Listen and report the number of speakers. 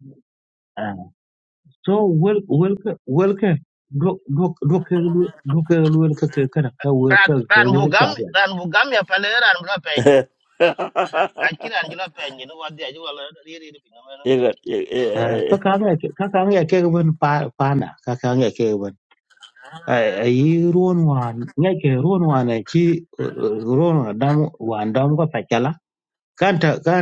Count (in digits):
3